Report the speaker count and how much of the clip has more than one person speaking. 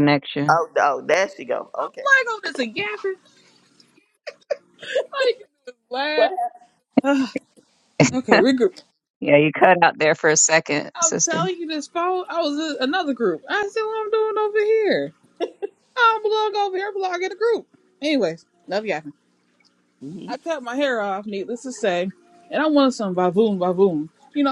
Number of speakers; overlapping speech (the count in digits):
3, about 4%